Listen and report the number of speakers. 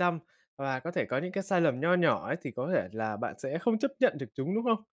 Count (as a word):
one